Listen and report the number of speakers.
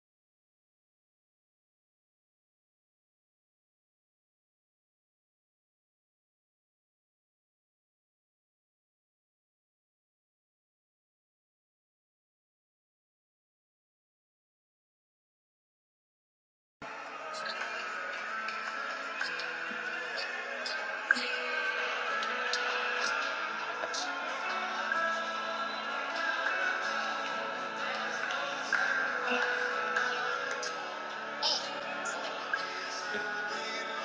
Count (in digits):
0